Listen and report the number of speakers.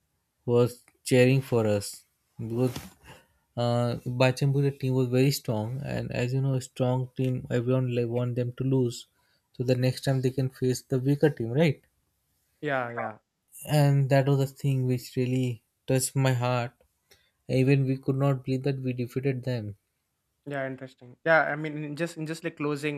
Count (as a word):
two